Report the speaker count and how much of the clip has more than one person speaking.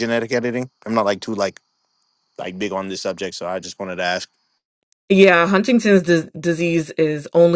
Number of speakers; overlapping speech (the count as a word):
two, no overlap